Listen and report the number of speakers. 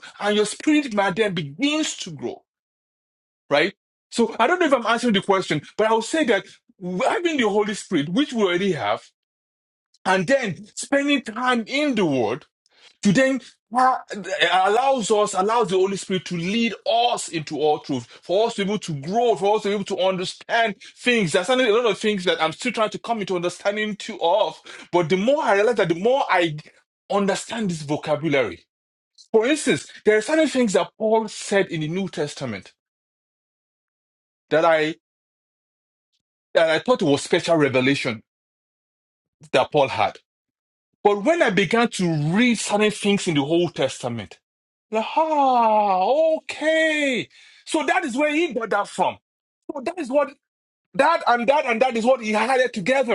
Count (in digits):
1